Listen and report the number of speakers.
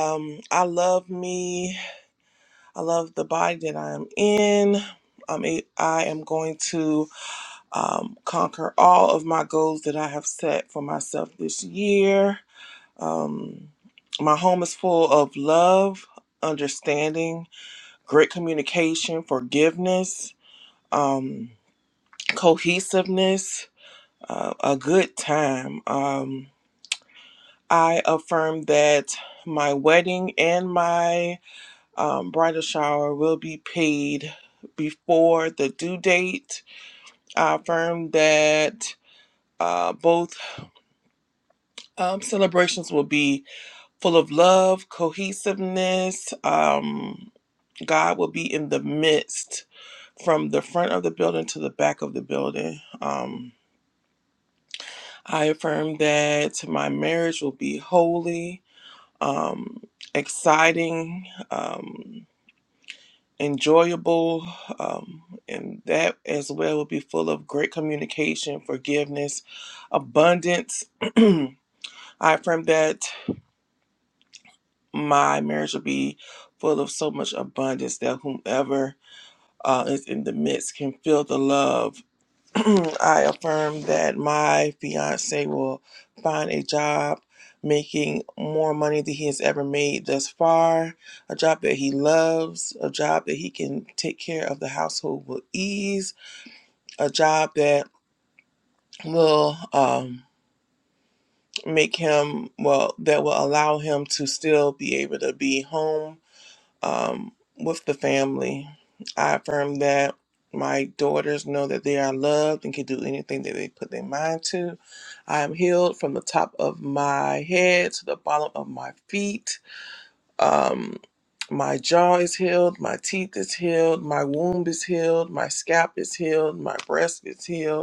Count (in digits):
1